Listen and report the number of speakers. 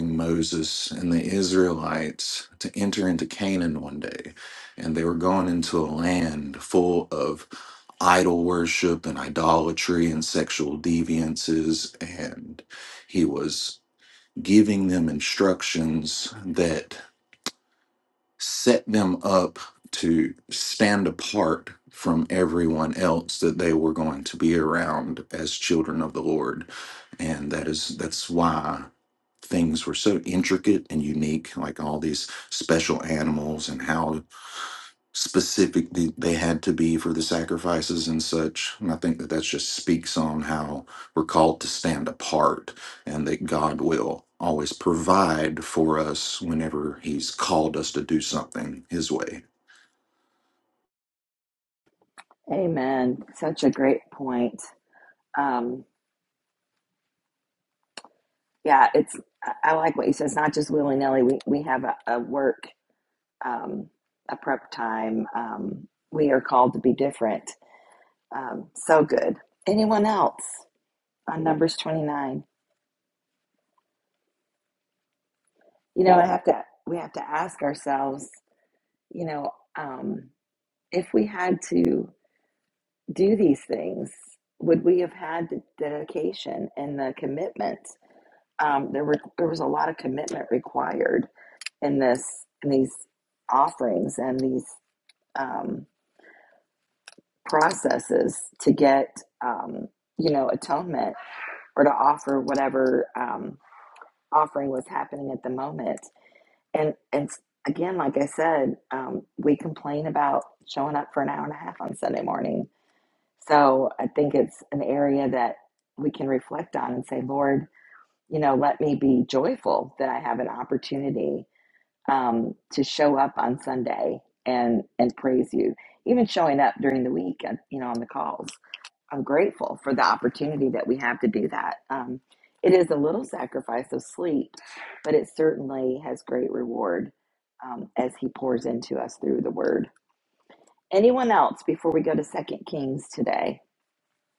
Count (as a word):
two